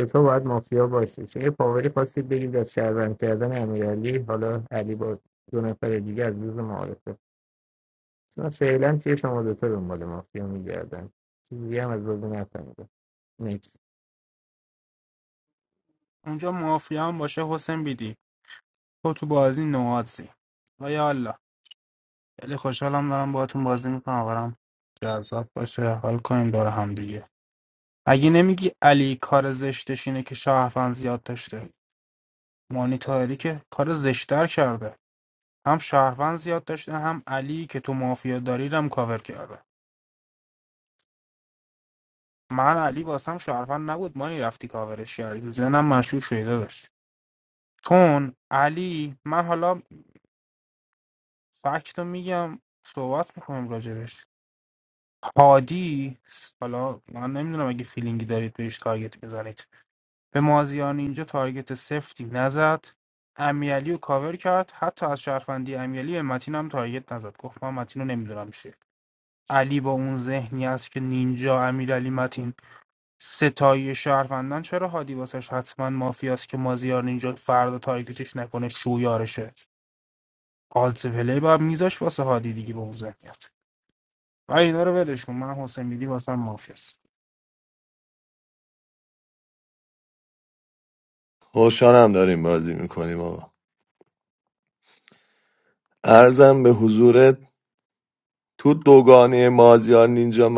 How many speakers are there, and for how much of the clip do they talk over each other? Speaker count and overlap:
3, no overlap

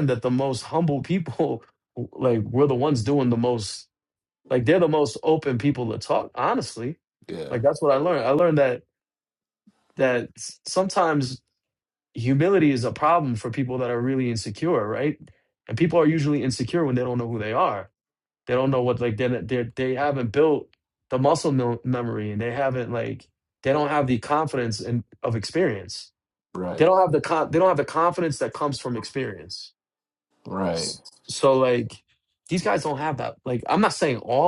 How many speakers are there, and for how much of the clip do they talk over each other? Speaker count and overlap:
2, about 1%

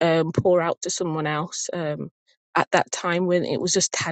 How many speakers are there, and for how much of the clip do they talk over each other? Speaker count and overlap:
1, no overlap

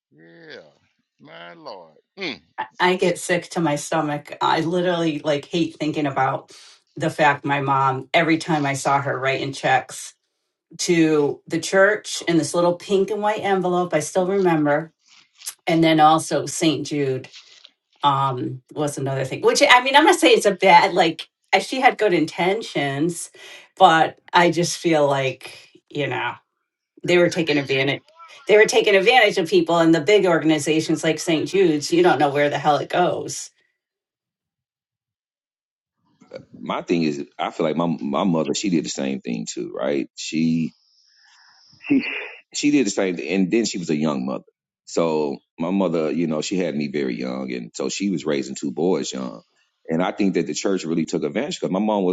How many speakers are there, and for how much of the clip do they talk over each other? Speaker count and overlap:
3, about 2%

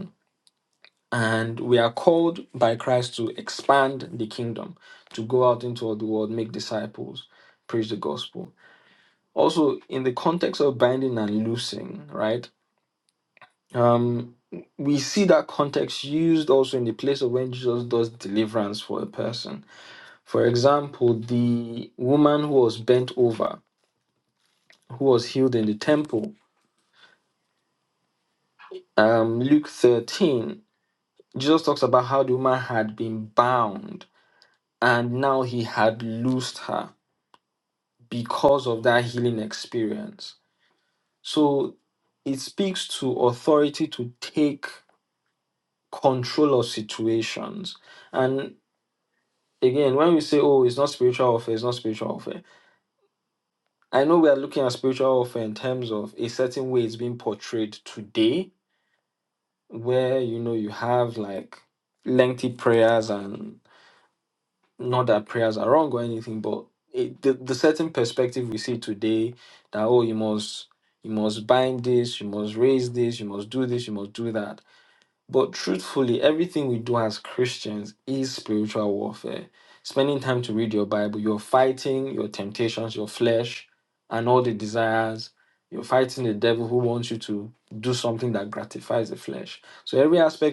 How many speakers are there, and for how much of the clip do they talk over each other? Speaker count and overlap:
1, no overlap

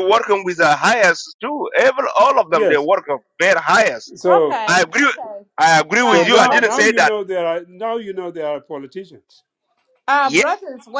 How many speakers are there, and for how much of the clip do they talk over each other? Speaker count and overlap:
3, about 19%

